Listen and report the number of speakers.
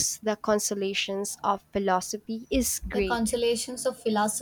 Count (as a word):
two